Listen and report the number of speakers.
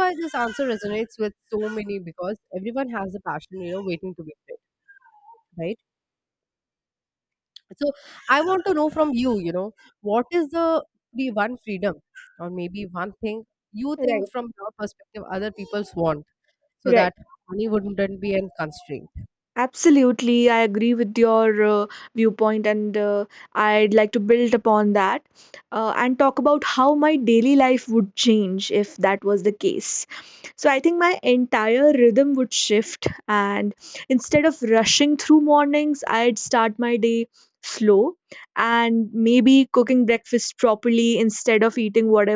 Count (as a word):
two